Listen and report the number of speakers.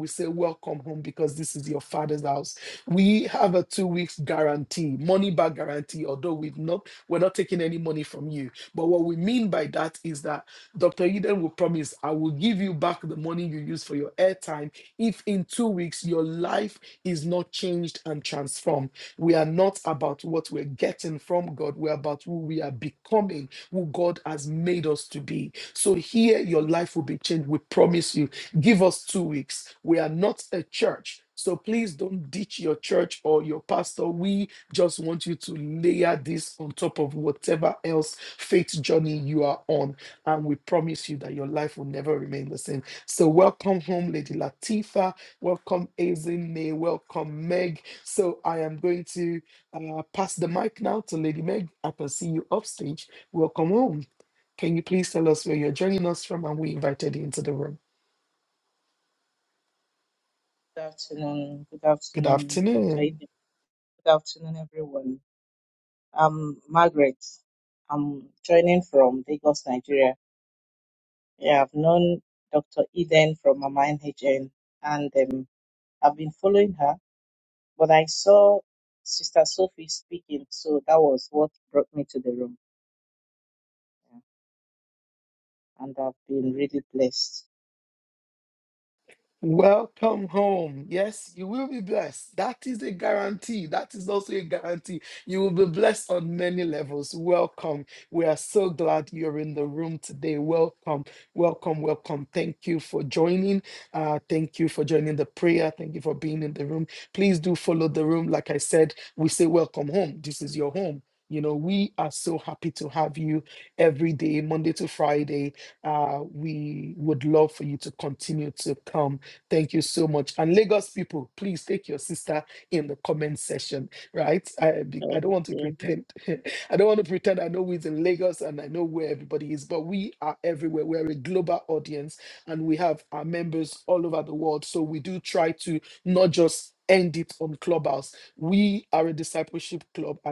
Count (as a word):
two